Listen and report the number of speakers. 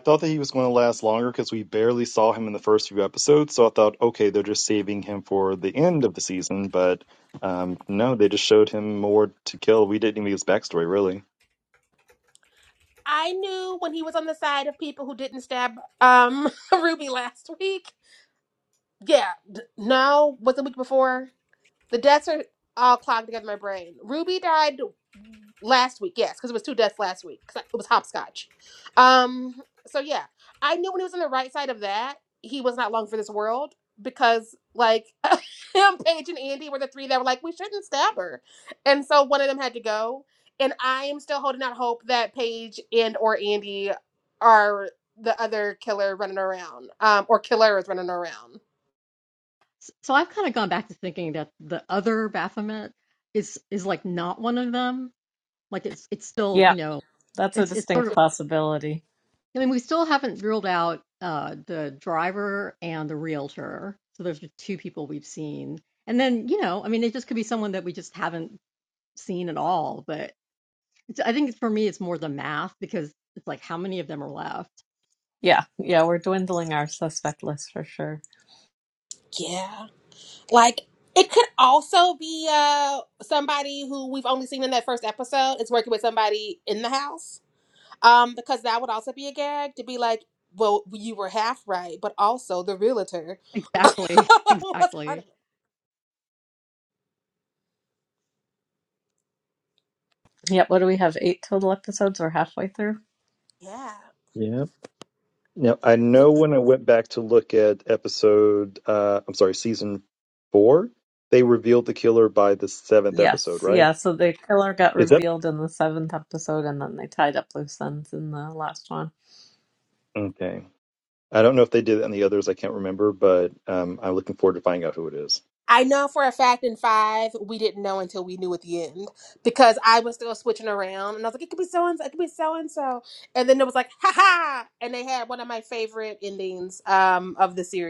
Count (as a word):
four